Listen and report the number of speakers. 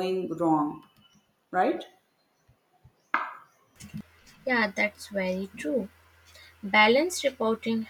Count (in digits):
2